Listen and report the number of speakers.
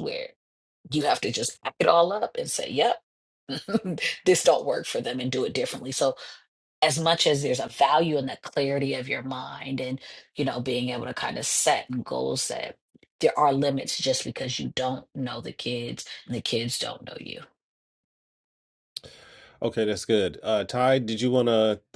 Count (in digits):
2